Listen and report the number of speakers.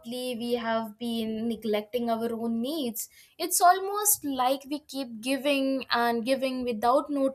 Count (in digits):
1